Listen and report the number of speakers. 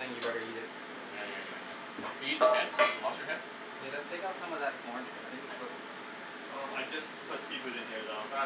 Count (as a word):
three